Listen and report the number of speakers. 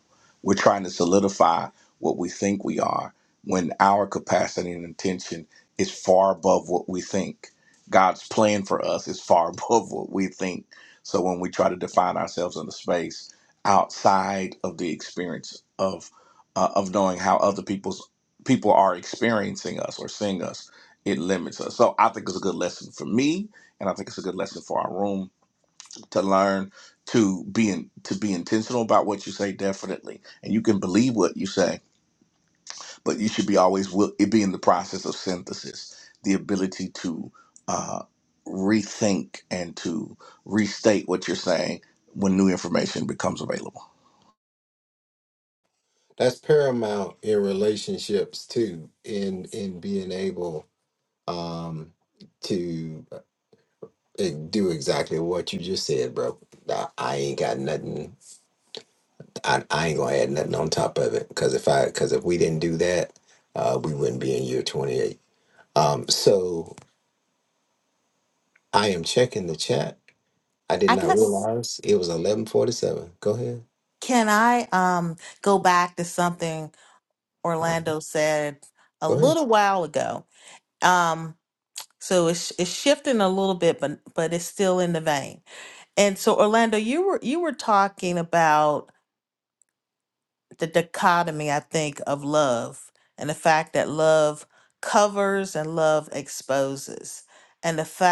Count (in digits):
3